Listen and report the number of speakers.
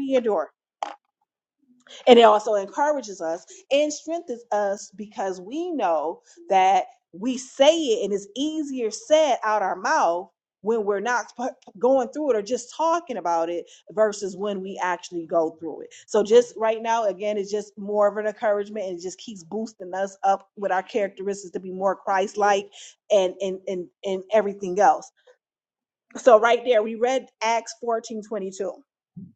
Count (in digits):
1